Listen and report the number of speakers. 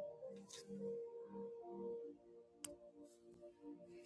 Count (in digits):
0